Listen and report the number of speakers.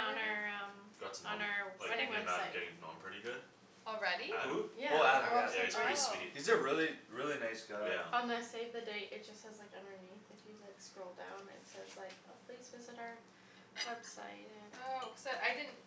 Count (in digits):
4